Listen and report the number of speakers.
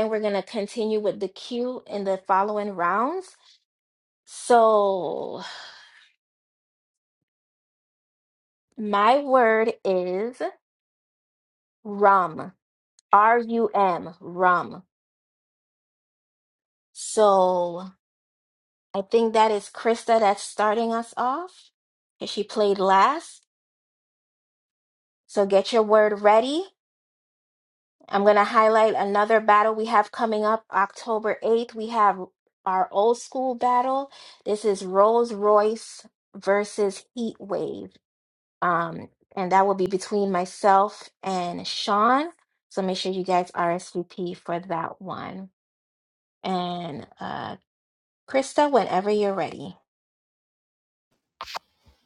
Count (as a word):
one